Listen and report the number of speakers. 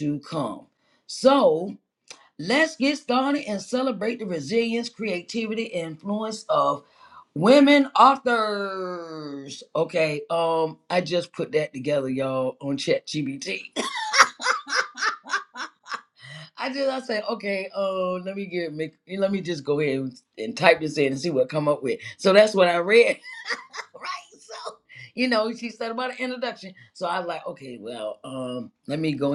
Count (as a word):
one